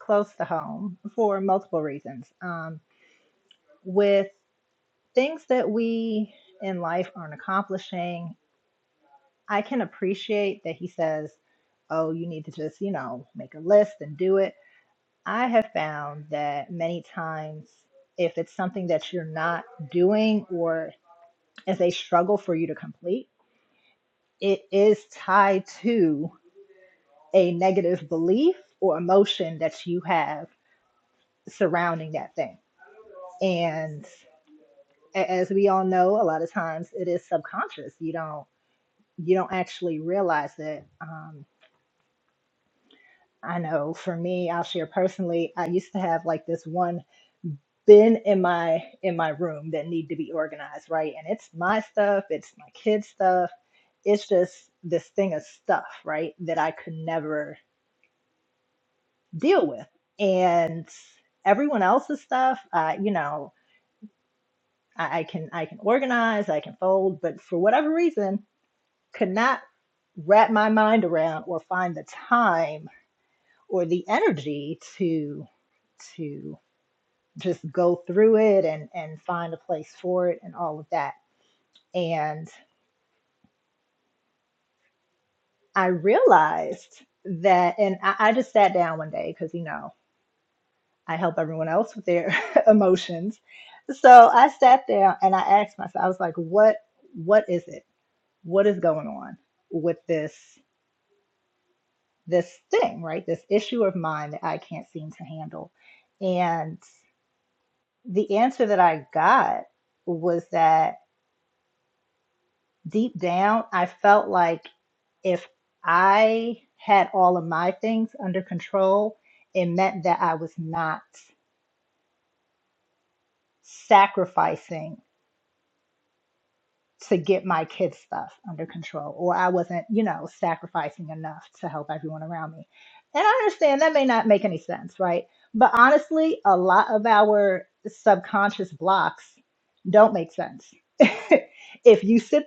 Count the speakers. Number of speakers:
one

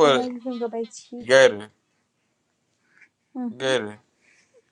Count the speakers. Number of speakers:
two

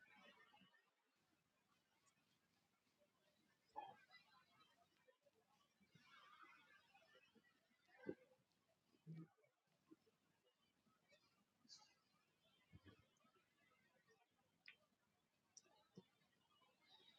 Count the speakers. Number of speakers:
zero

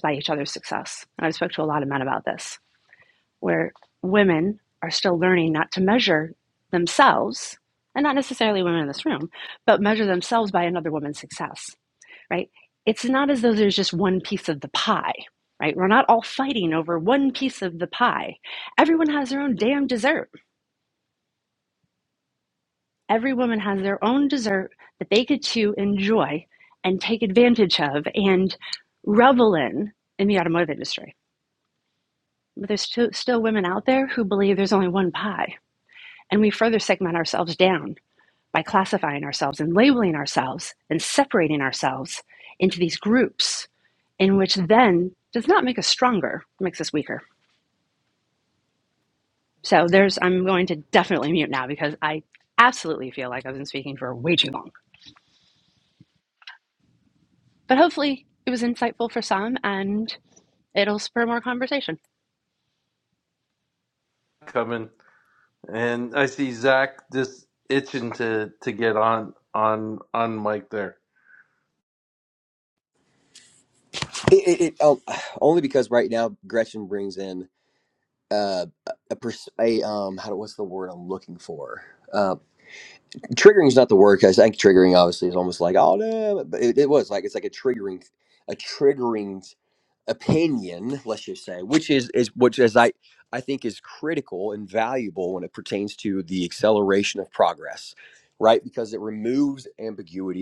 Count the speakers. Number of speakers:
three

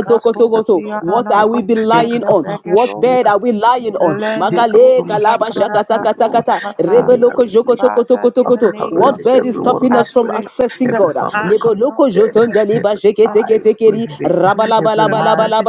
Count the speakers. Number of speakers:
three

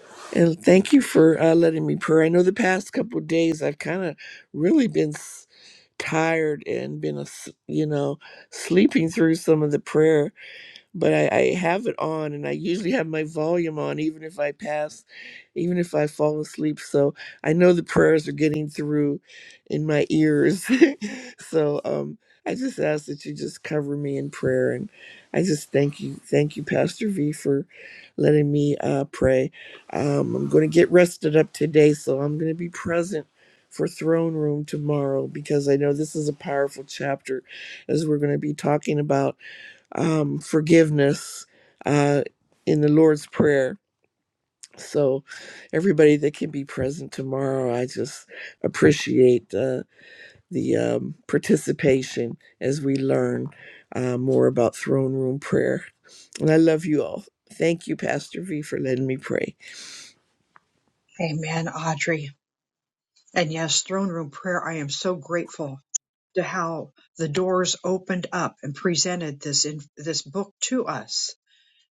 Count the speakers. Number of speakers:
two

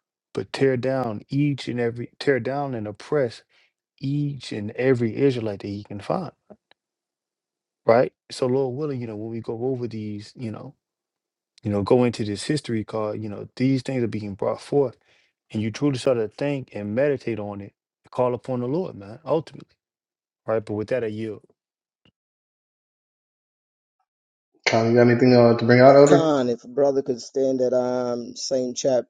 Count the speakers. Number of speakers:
three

